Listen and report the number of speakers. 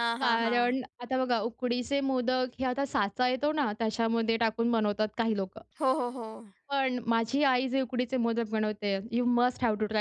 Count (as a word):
two